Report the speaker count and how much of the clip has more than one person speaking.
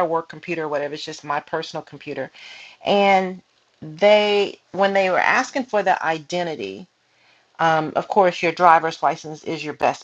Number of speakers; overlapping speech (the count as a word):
one, no overlap